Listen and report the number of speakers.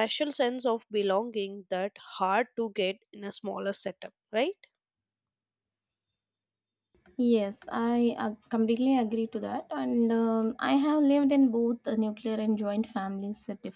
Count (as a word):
two